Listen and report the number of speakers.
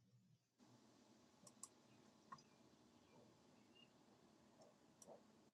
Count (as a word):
zero